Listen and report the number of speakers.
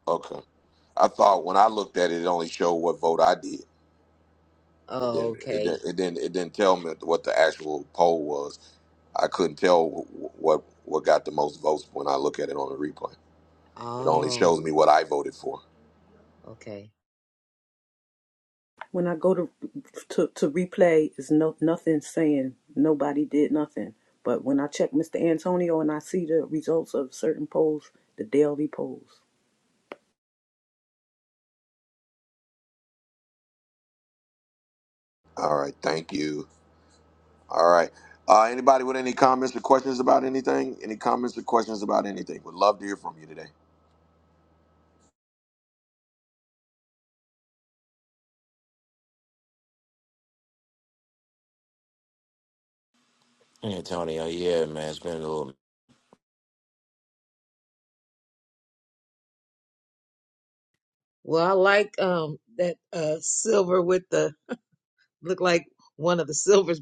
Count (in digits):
4